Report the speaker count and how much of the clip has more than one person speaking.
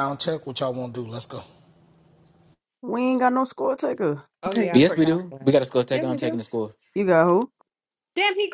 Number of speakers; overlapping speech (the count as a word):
four, about 17%